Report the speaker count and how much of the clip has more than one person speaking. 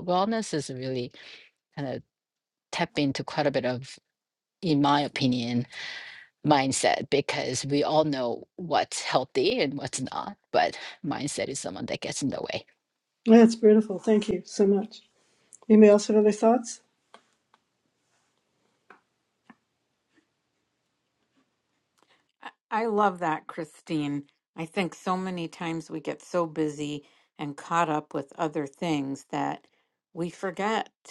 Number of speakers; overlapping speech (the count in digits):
3, no overlap